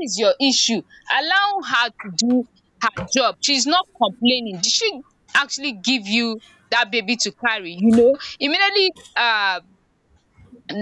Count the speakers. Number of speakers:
1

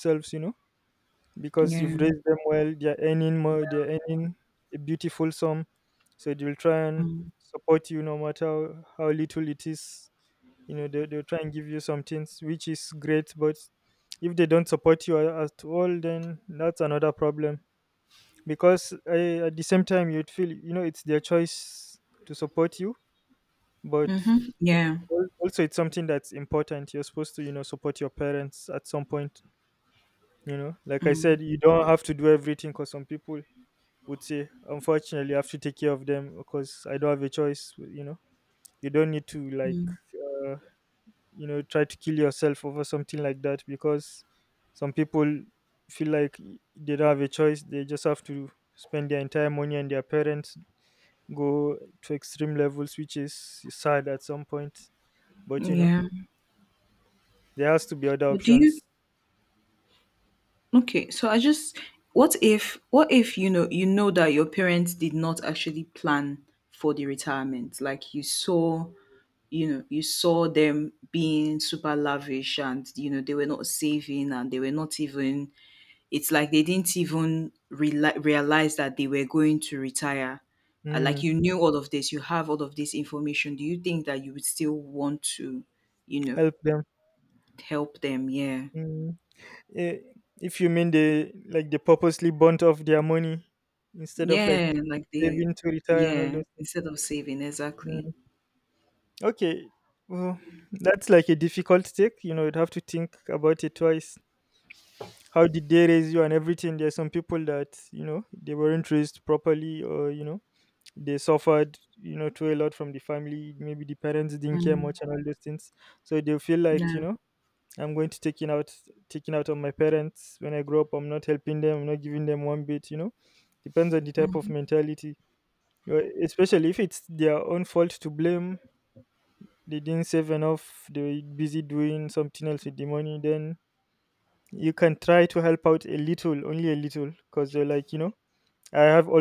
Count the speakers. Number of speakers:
2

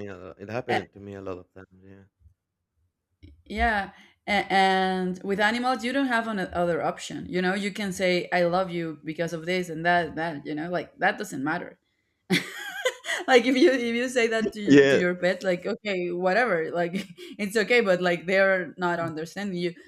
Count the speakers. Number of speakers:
2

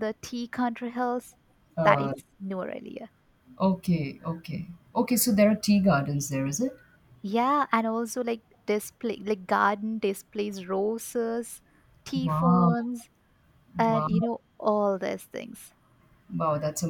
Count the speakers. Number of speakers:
2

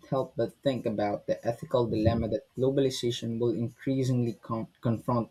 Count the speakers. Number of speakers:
1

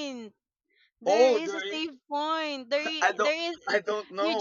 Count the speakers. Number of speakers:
2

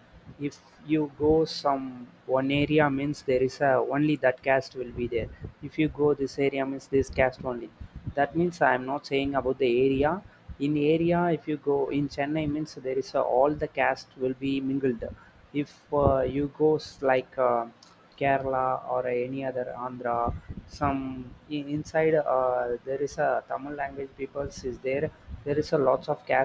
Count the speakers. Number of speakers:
1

